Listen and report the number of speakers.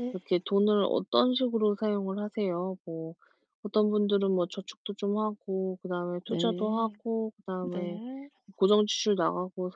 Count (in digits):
2